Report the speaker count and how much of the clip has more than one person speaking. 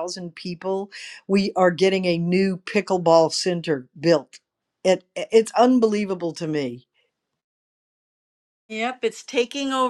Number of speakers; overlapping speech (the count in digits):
2, no overlap